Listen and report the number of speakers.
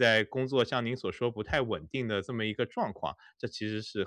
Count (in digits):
1